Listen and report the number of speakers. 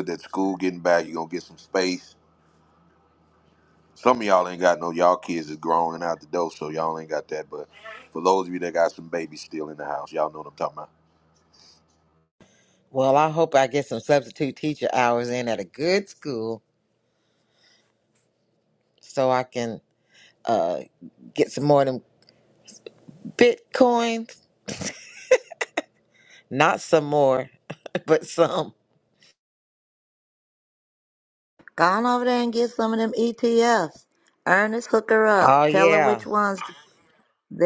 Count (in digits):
3